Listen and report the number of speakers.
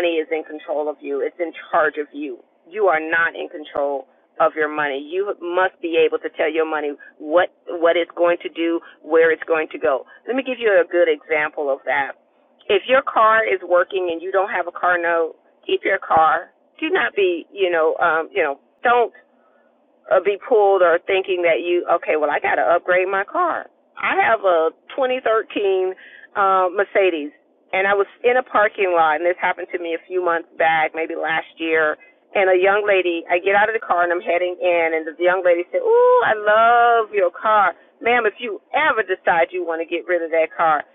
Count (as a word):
one